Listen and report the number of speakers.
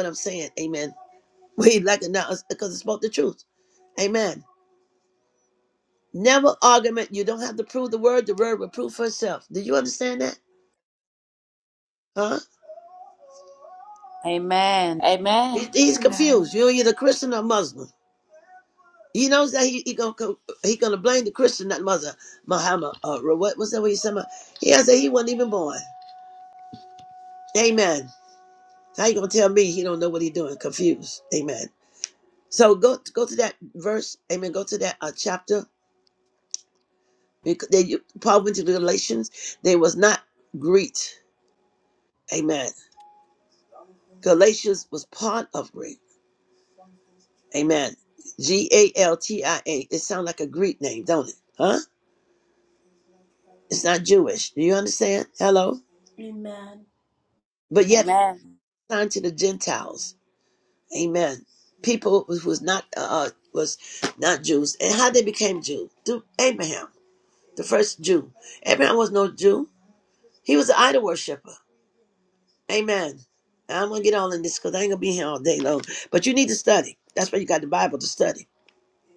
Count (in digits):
3